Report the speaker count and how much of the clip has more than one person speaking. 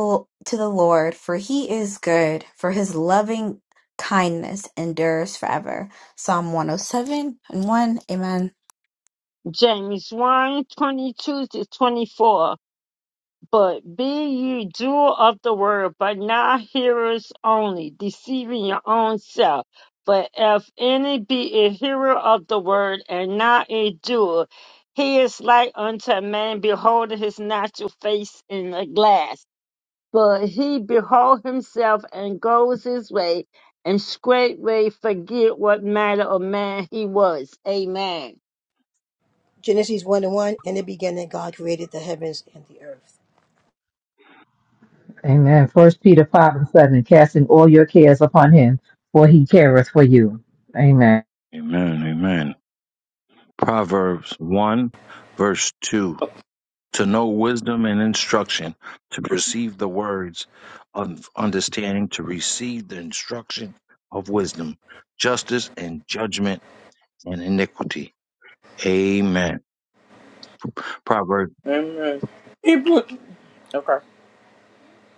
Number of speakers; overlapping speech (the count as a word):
six, no overlap